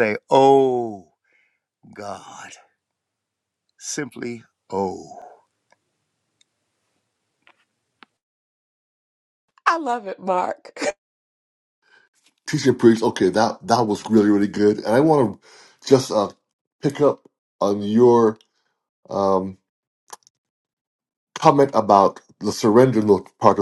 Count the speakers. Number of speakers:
3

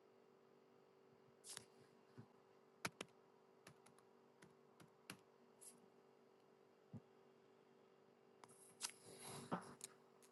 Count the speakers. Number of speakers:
0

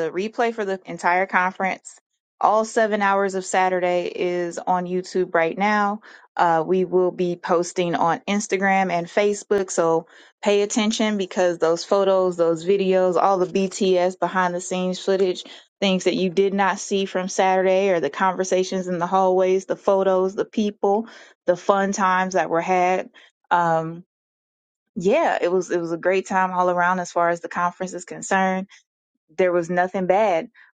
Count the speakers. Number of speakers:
1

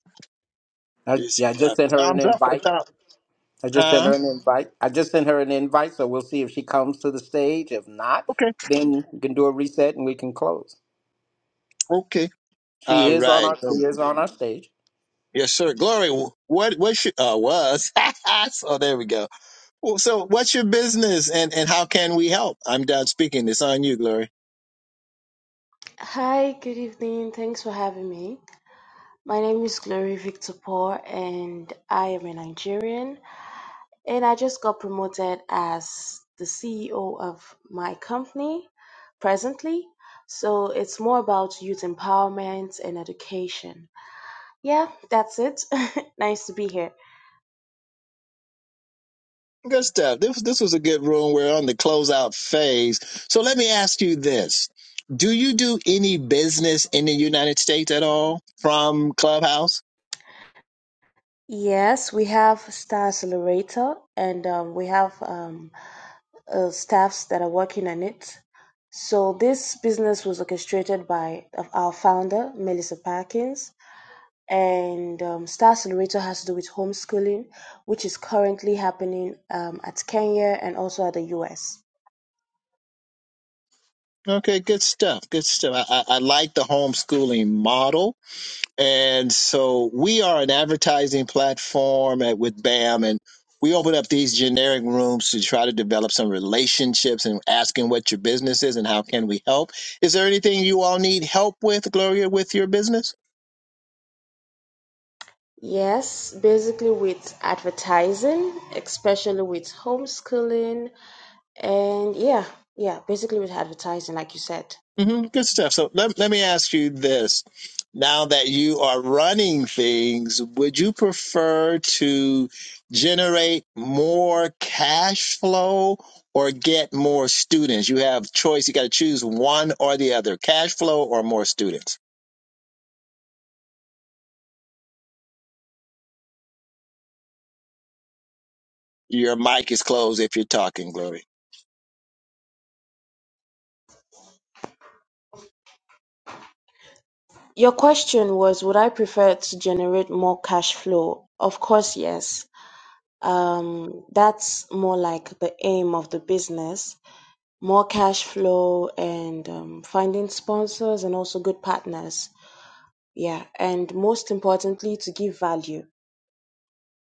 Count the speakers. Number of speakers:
3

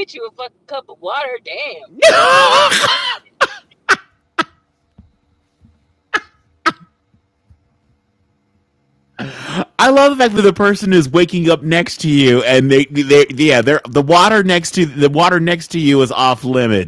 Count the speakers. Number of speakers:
2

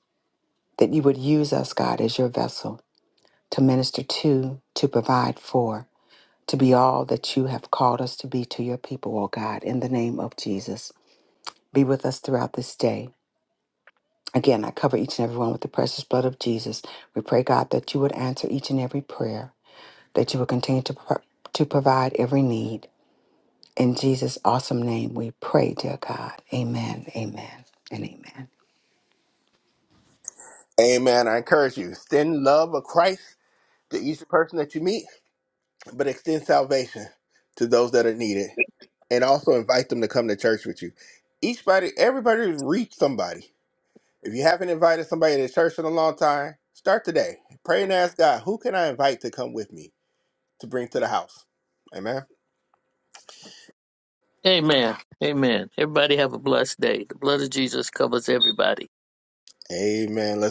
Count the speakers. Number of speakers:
3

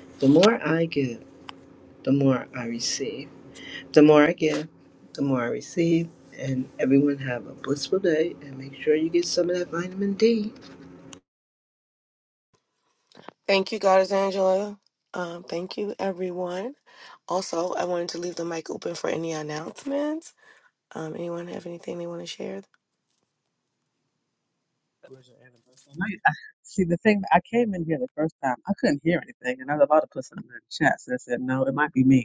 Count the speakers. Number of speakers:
3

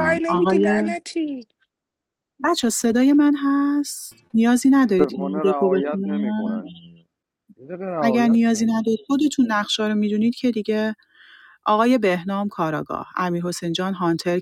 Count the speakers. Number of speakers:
3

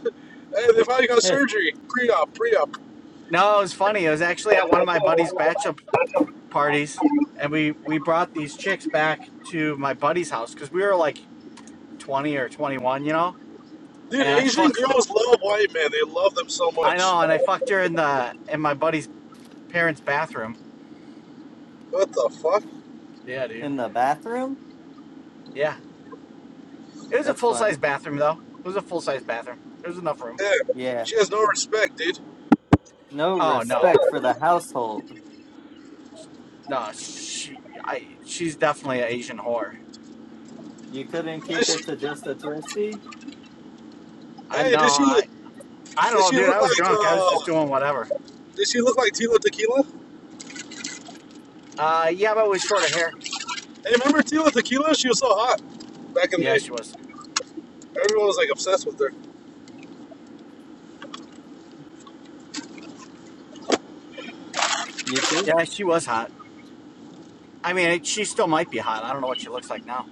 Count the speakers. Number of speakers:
3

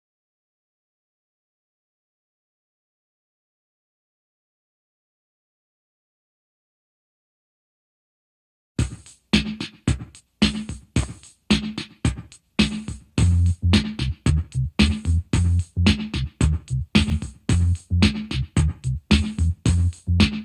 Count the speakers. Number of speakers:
0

